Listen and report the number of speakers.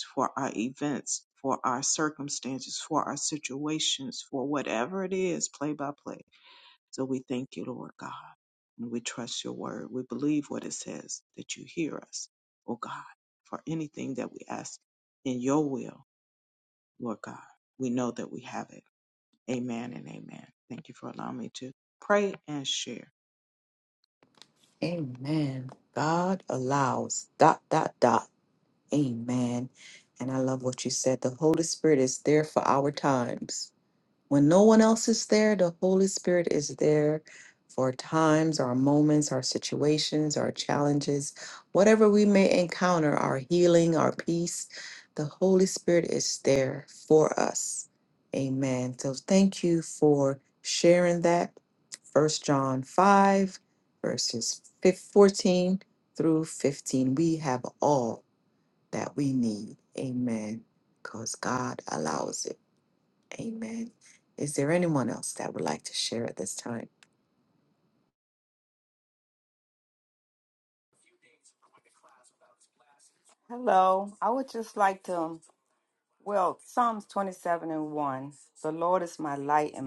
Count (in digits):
3